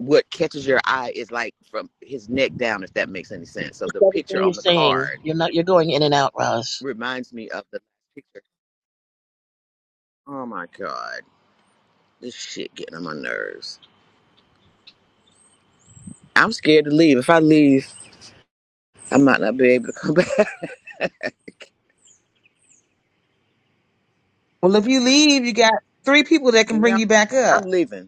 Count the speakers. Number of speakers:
three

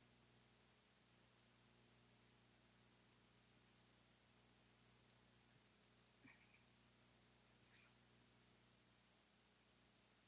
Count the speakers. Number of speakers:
zero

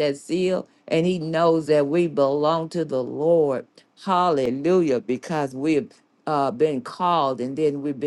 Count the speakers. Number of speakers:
one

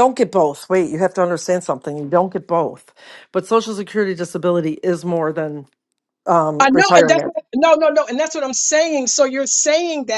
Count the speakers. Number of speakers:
two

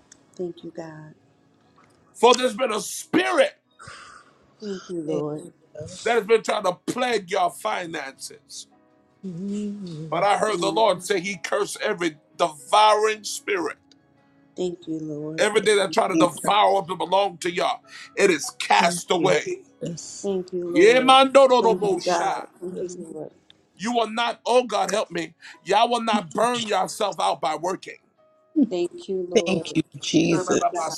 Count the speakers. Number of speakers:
three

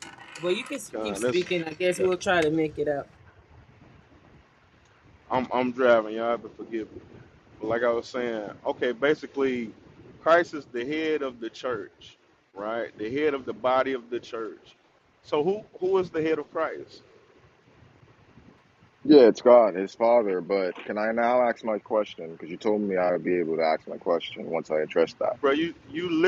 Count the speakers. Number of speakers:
three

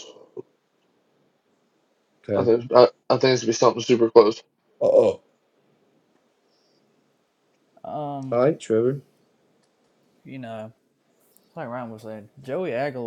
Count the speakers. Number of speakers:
three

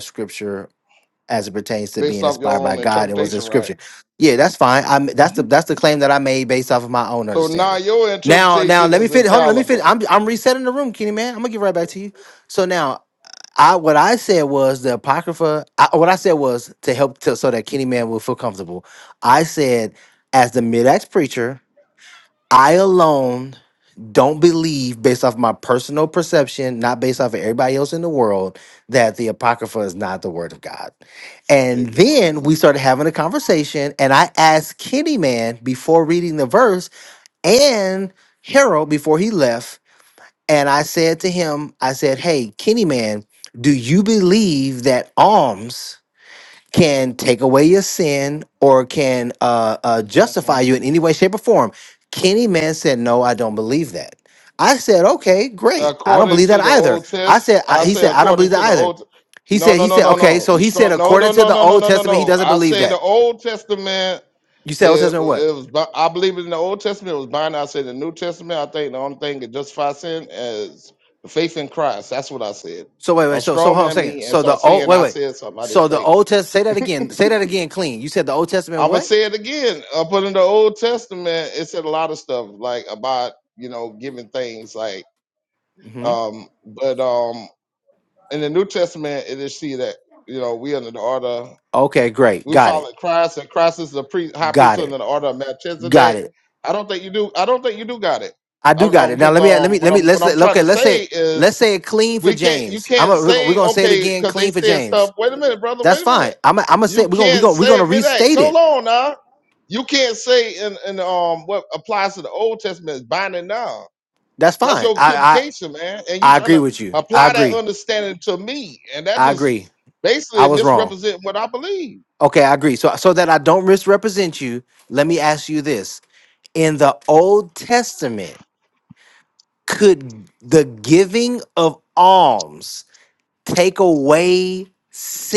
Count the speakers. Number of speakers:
two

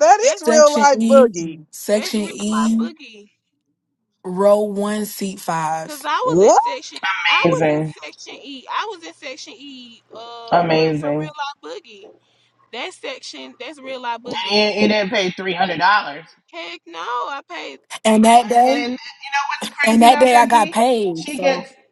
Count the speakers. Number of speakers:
four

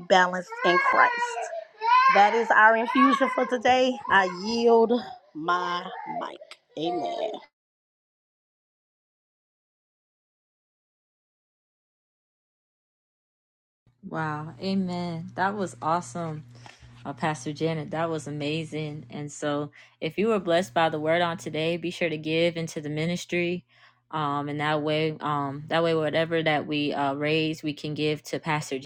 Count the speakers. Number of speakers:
two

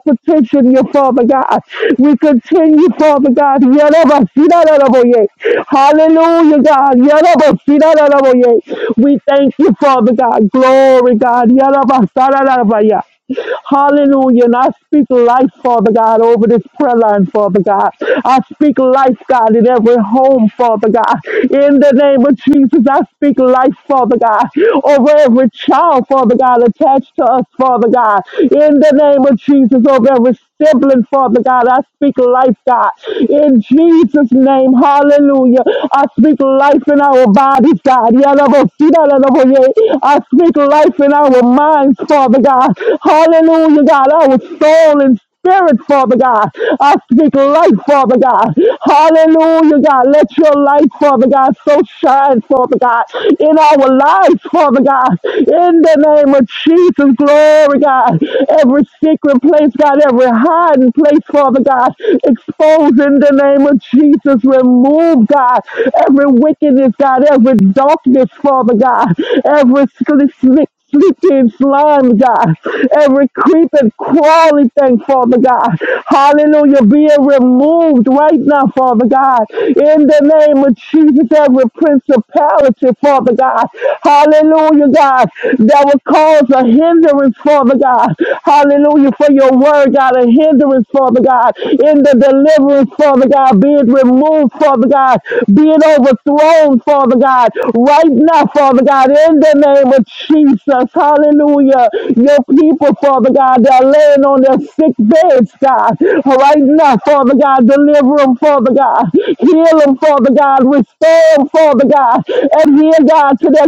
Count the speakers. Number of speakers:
one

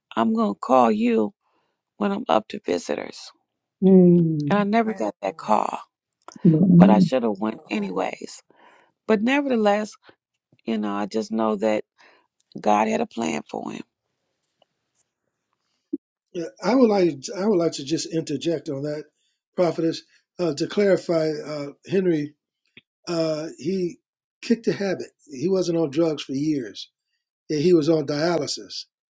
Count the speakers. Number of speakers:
three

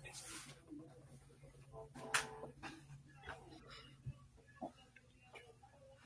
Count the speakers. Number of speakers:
zero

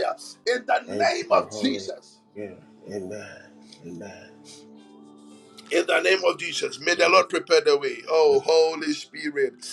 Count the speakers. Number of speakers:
two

